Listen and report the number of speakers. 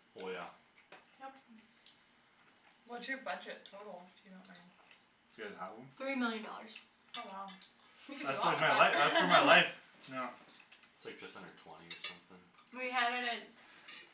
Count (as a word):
four